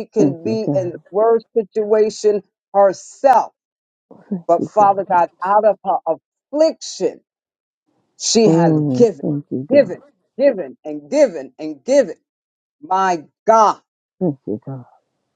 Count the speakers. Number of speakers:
two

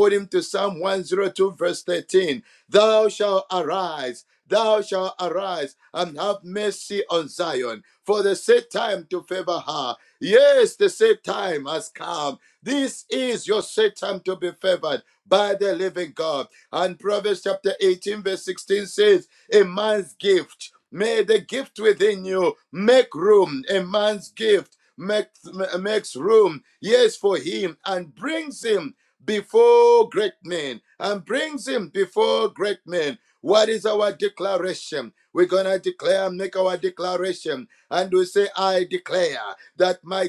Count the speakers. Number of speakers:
one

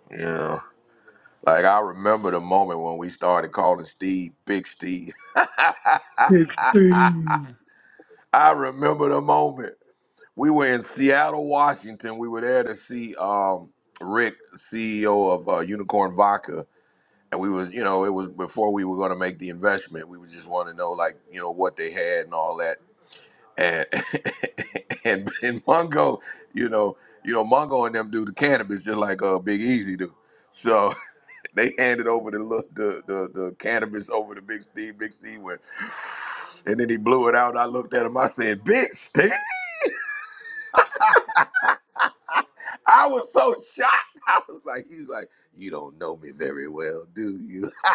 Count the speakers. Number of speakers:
two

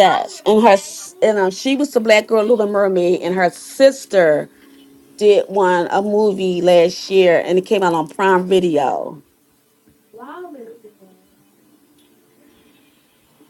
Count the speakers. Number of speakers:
one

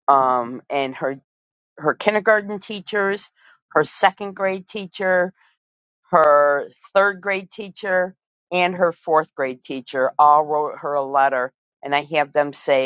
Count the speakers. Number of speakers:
one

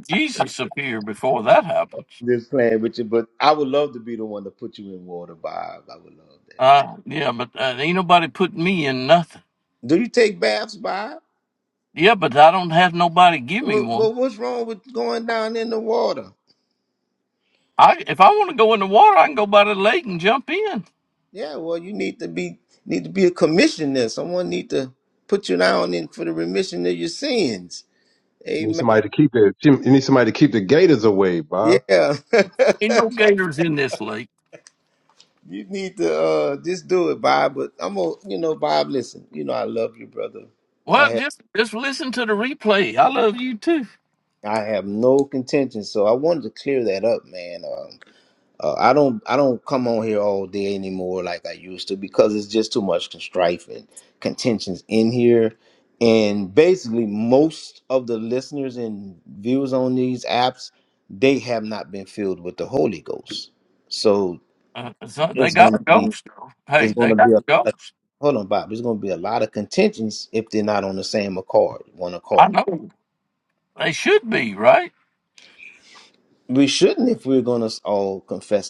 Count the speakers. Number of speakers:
three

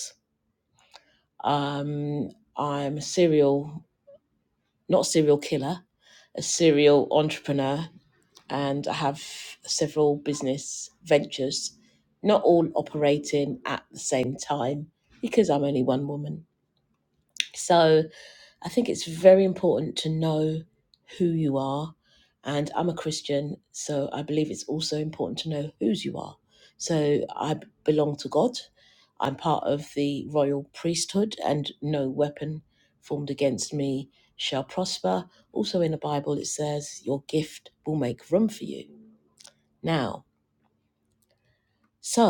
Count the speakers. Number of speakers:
one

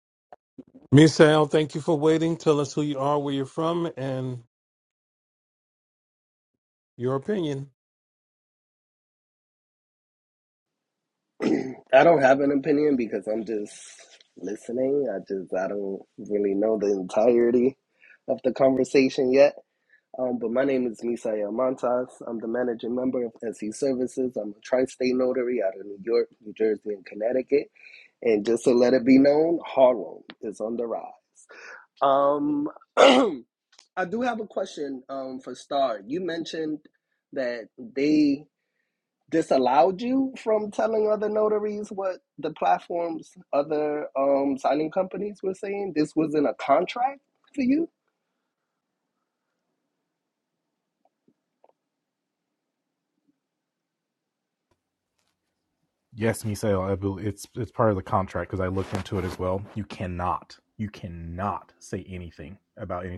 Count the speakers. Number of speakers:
three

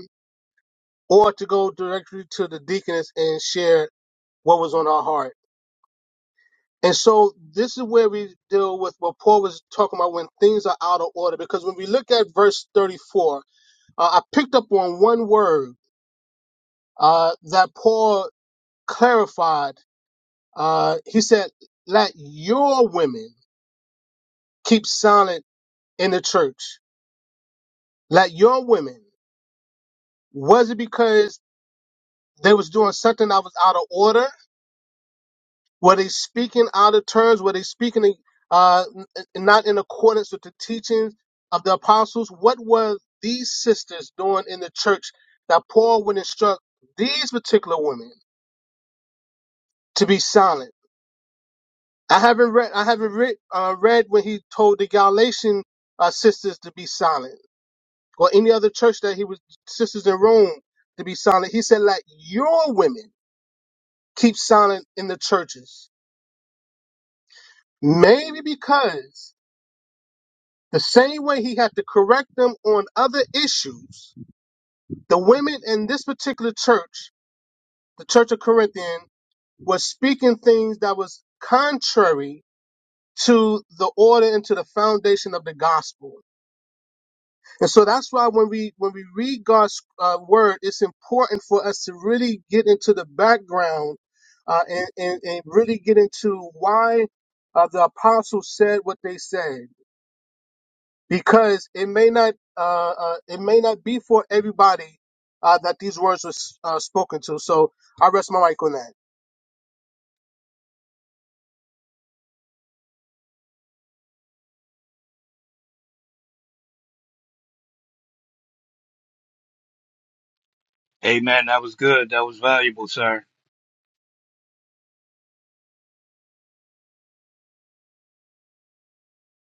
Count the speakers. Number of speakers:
two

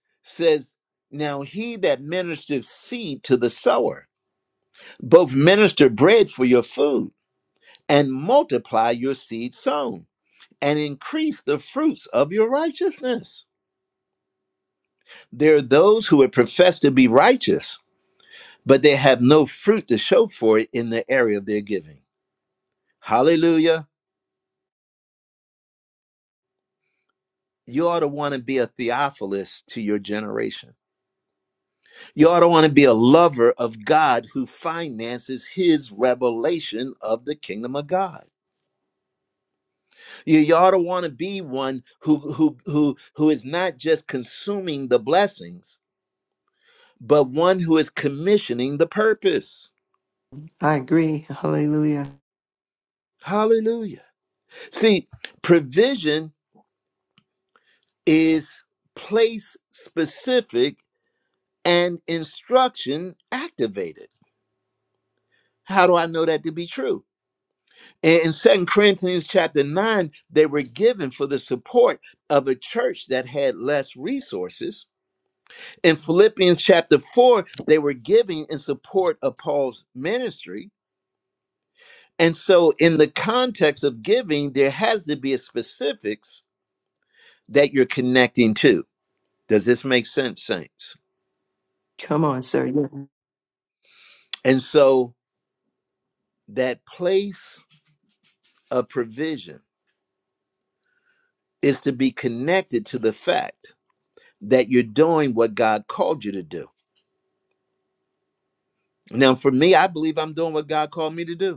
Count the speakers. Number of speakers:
two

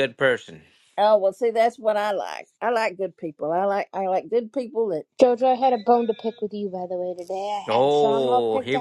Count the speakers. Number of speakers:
three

